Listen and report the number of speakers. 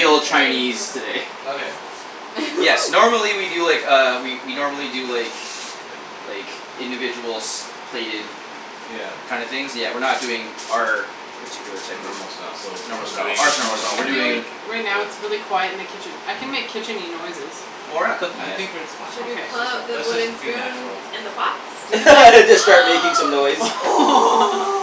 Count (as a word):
four